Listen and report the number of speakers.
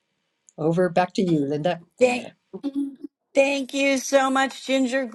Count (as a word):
two